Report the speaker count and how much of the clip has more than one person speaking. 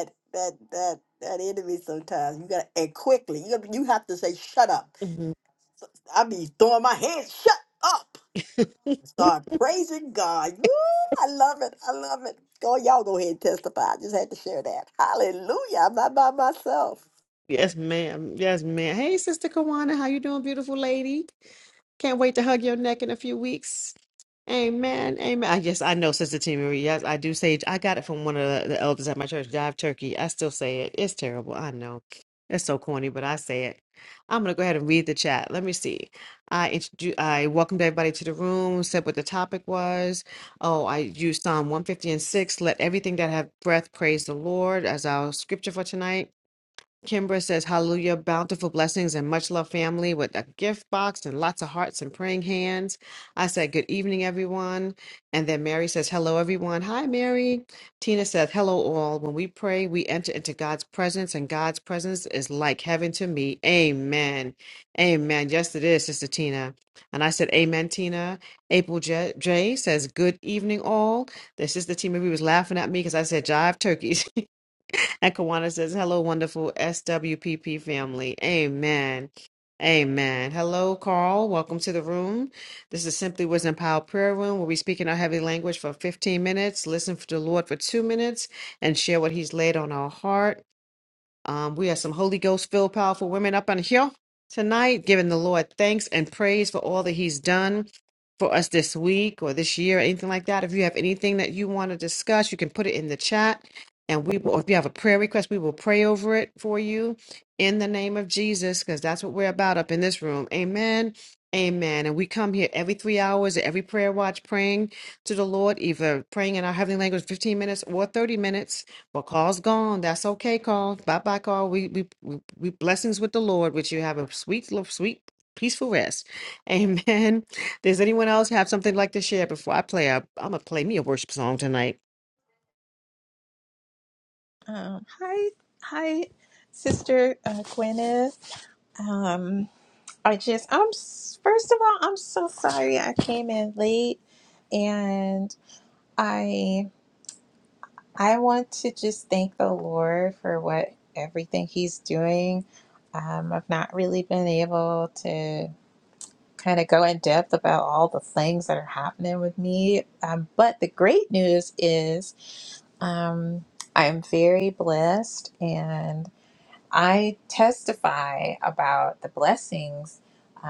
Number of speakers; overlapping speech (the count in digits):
3, no overlap